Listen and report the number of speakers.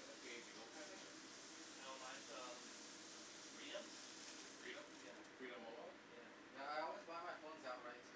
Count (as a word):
three